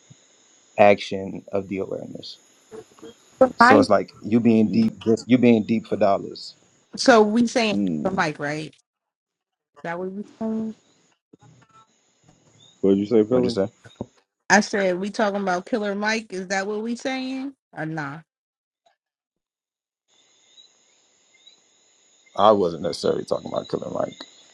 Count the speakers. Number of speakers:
3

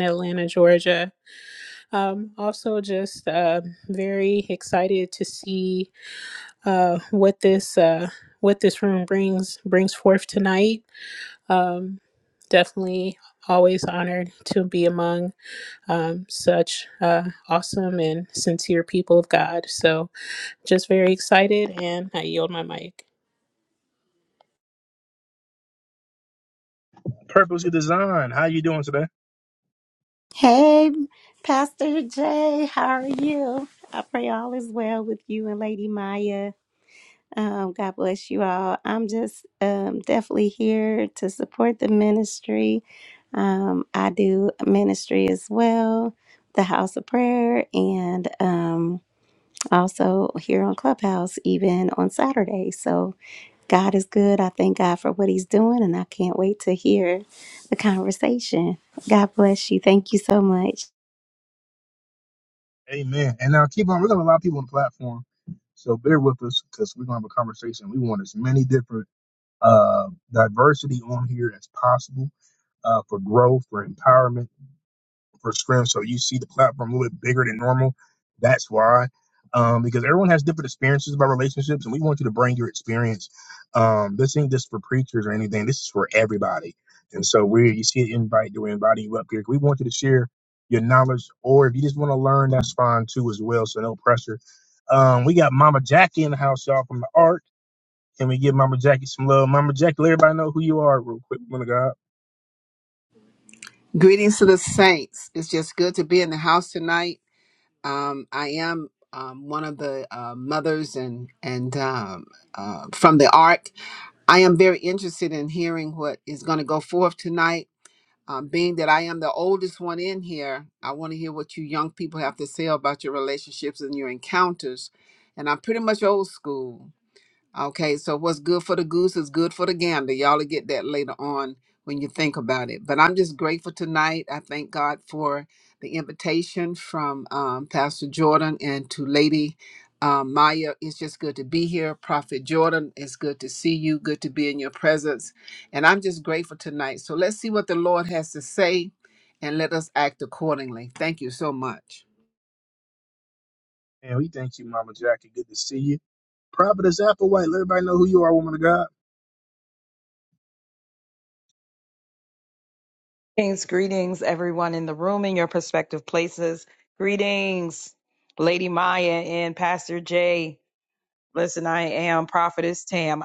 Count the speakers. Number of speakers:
5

